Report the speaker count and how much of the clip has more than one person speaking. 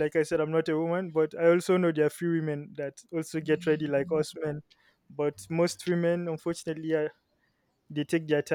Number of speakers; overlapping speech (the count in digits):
1, no overlap